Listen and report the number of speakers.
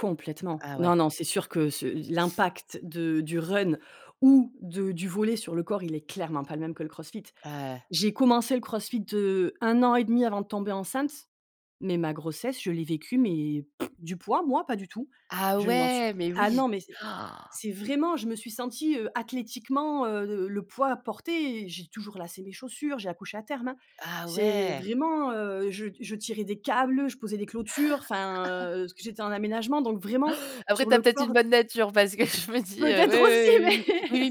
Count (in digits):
2